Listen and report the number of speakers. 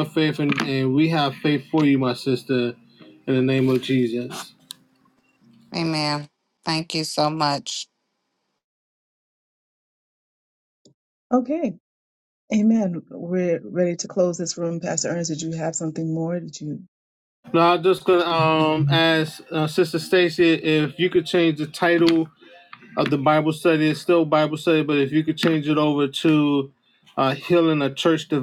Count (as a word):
three